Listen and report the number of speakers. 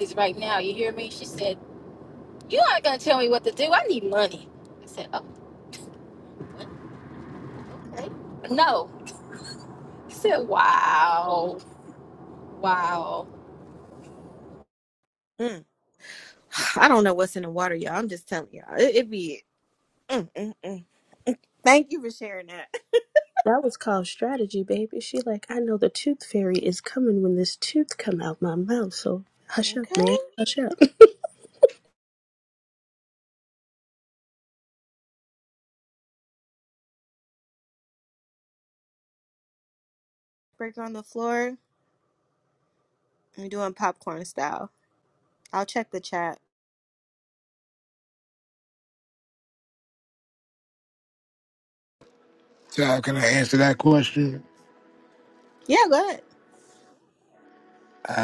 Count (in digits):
4